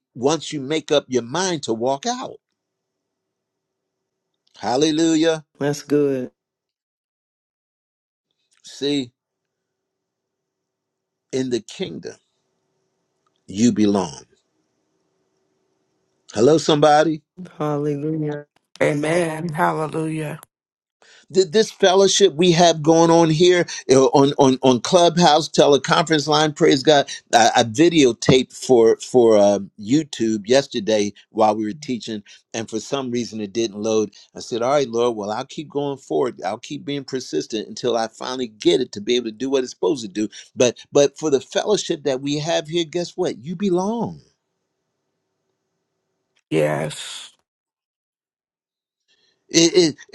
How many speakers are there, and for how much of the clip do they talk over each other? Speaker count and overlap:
3, no overlap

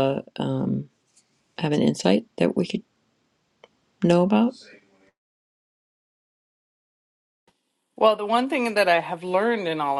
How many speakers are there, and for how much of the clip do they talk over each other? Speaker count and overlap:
2, no overlap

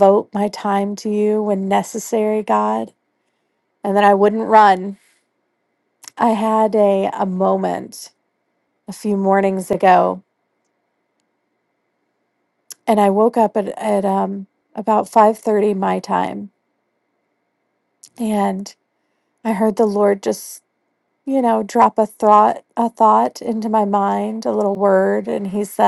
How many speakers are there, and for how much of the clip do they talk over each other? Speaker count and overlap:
1, no overlap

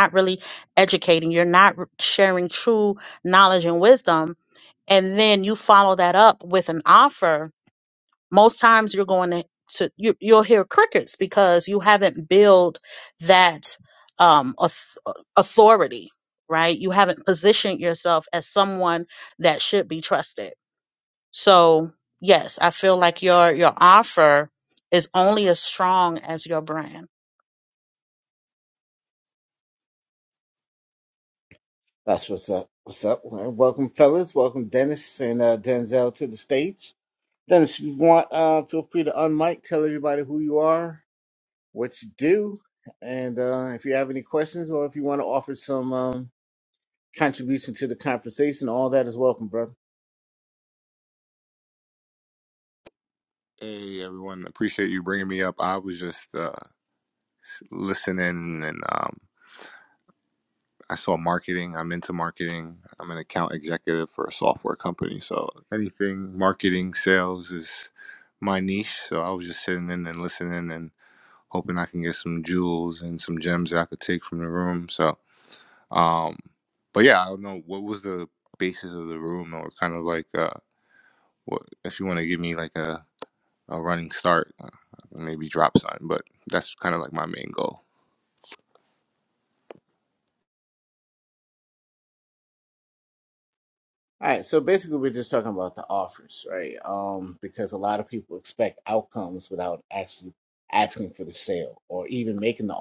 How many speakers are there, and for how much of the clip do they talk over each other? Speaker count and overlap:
3, no overlap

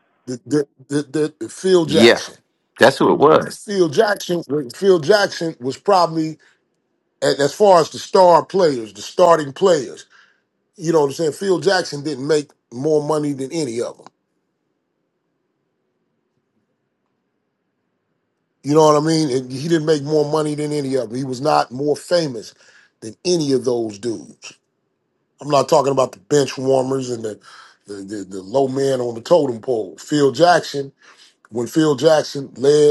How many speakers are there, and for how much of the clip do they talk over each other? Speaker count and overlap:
2, about 1%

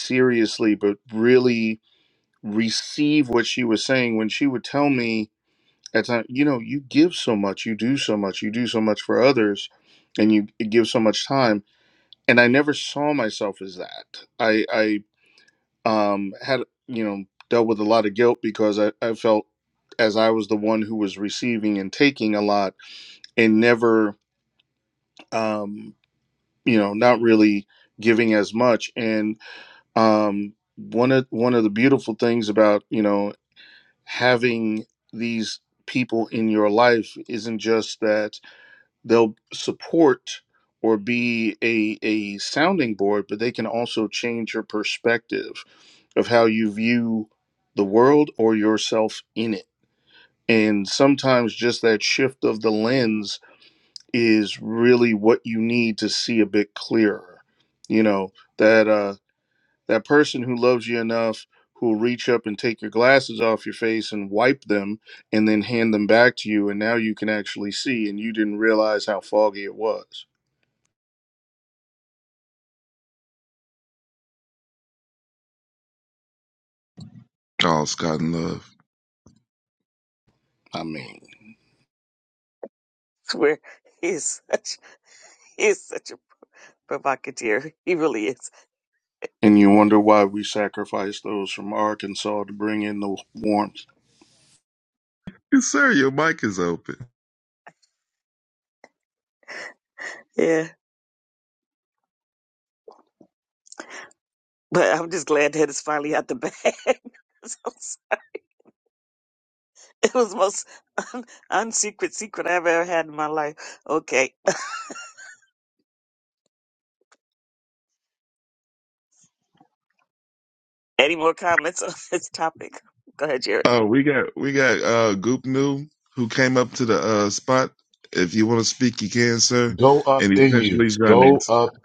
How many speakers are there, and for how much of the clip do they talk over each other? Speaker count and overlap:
4, about 1%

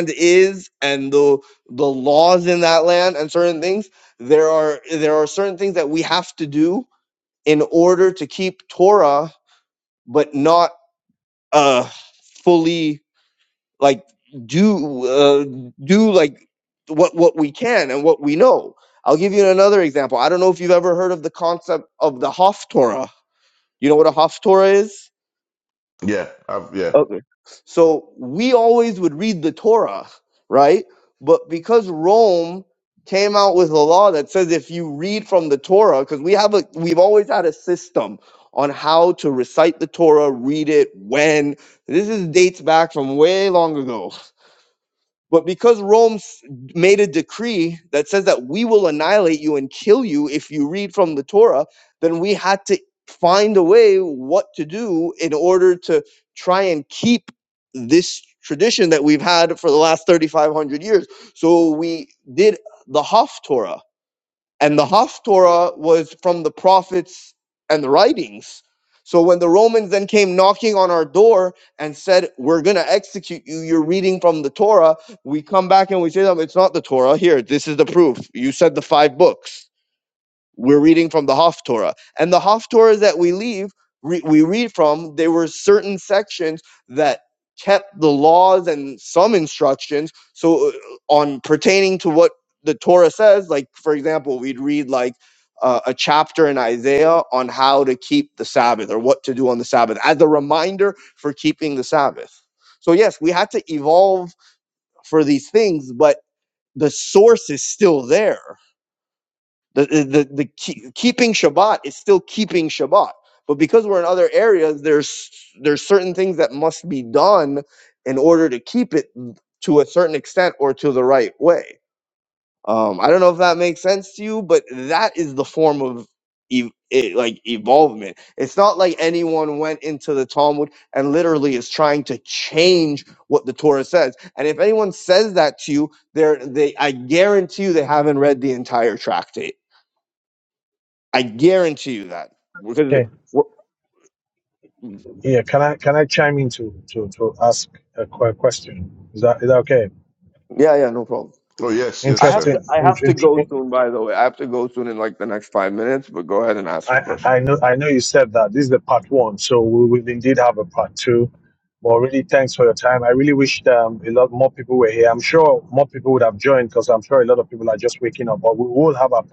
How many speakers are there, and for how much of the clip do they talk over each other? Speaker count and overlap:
3, about 1%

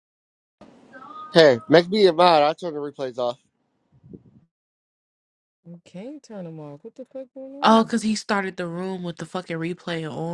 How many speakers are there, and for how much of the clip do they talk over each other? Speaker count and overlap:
3, about 3%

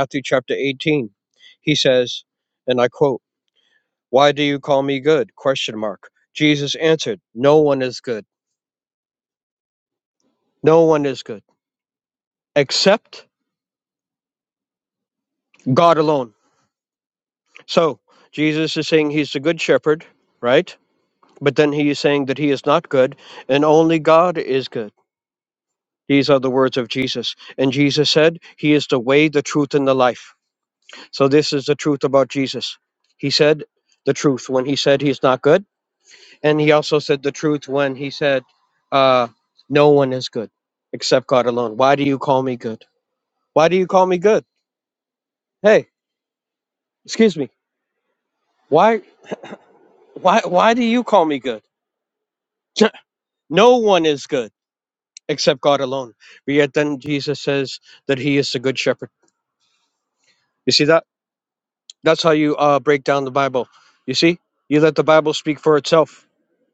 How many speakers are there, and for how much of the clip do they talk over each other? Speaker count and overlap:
1, no overlap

